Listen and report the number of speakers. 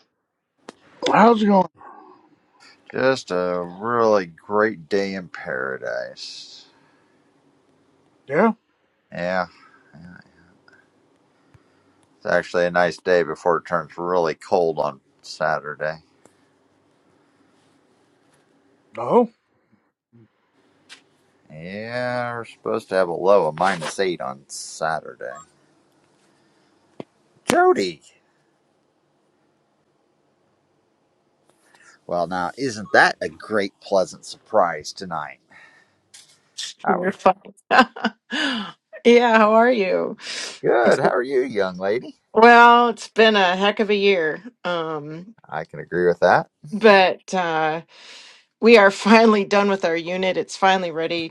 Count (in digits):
3